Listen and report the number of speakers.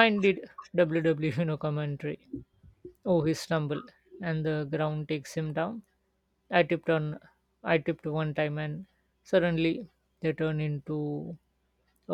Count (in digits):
1